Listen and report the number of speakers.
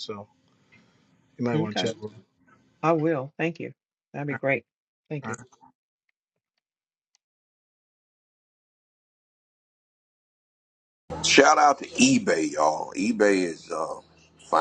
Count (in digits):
3